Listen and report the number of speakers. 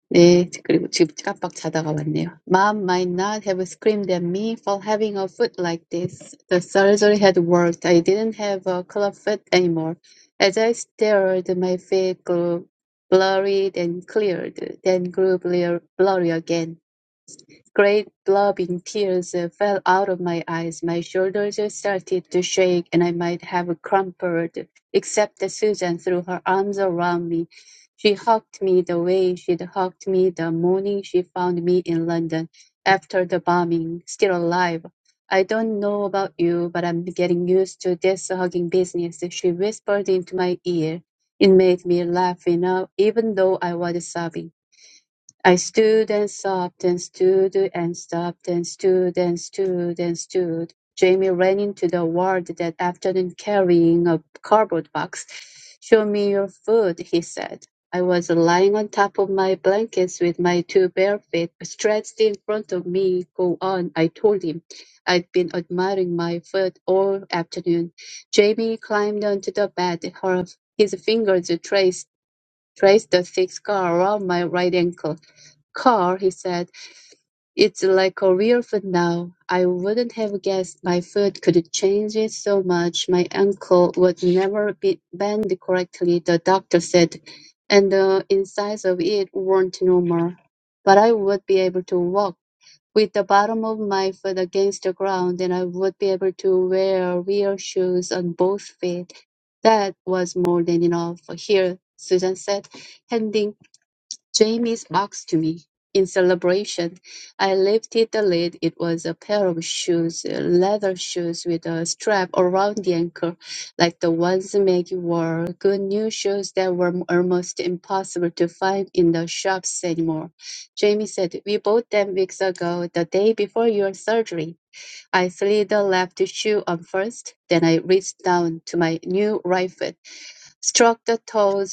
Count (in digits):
1